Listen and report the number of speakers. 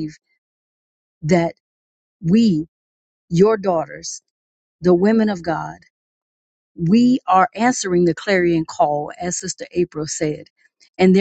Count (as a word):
one